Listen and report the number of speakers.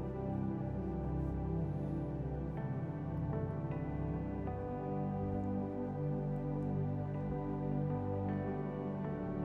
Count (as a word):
zero